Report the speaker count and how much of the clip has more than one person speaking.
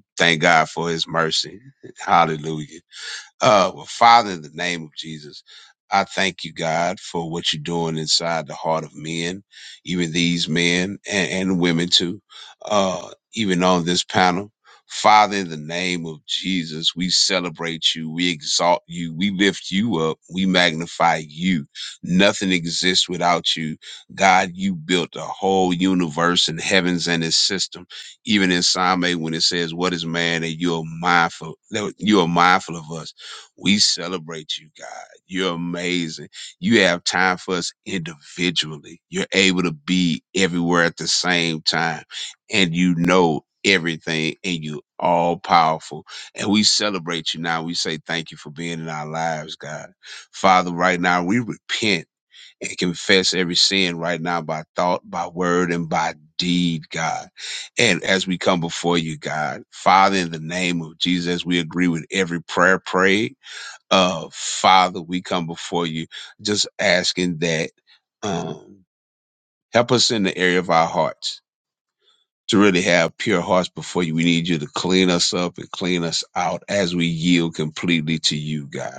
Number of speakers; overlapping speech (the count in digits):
1, no overlap